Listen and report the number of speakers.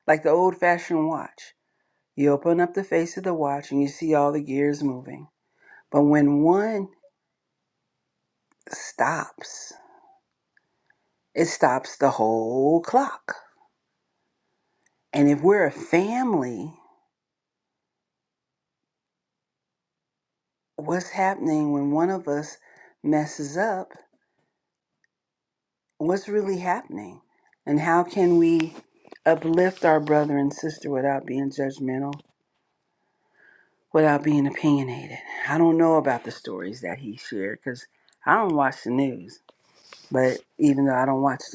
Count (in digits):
1